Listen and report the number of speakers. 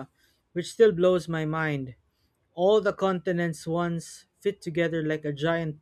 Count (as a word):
one